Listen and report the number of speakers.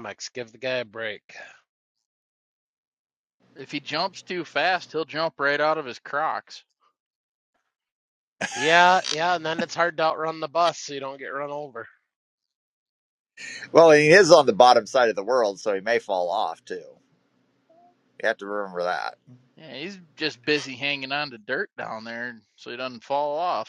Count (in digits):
3